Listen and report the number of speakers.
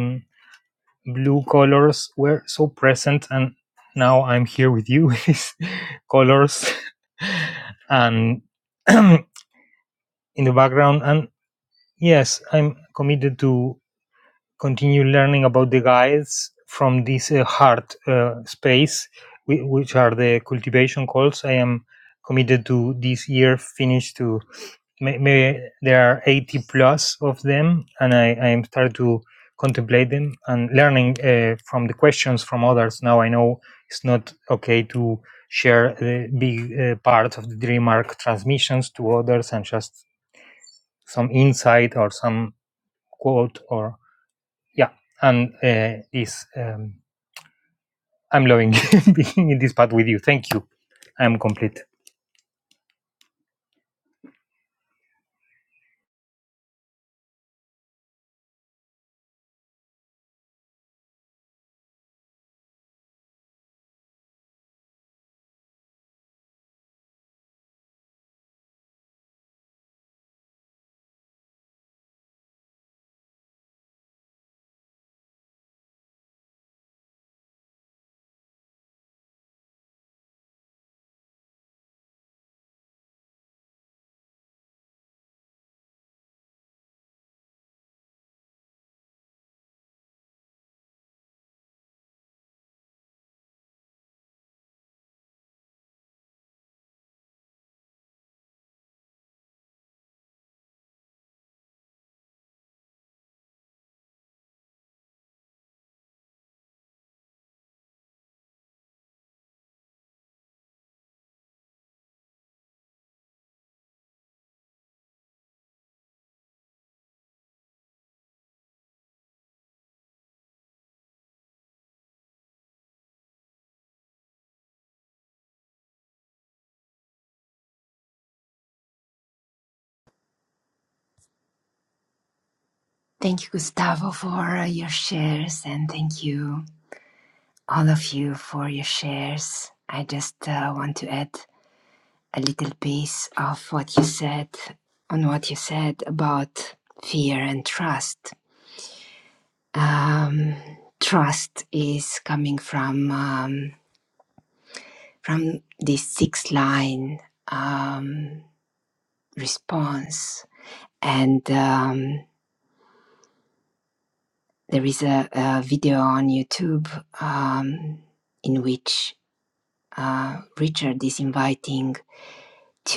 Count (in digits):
2